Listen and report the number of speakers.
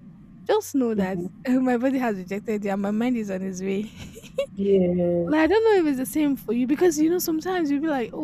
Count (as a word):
two